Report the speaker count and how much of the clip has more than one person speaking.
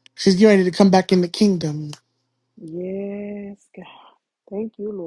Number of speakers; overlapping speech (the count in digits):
2, no overlap